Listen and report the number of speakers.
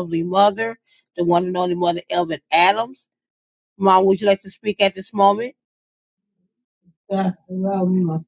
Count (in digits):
1